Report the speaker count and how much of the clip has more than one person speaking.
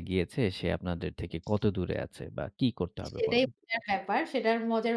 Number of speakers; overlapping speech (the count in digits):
2, about 12%